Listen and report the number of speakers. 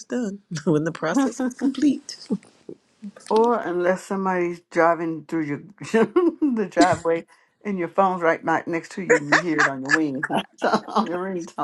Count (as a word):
two